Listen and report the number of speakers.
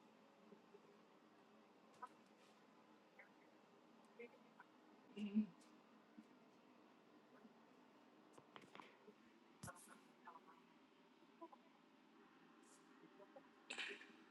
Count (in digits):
0